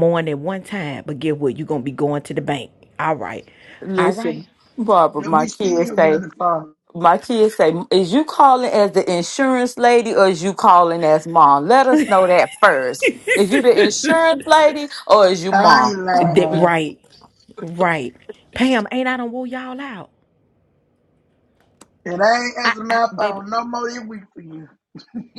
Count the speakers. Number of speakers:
three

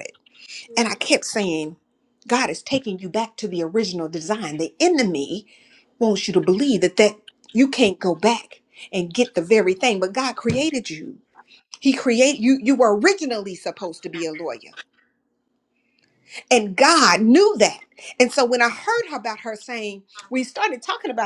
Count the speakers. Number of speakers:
one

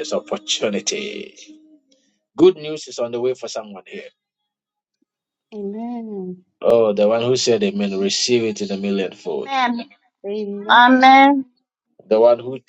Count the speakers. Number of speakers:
three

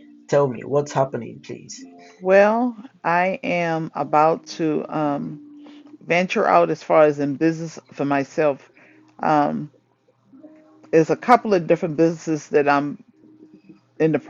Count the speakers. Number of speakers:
two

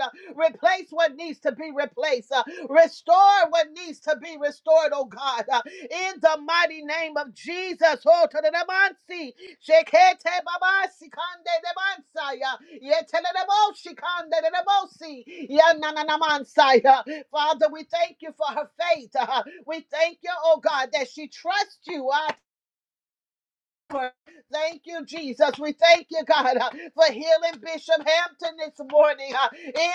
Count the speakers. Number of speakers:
one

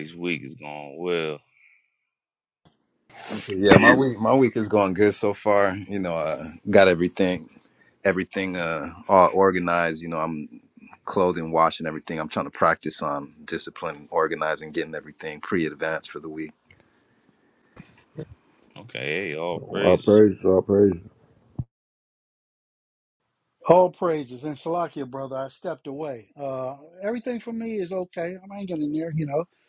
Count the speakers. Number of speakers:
four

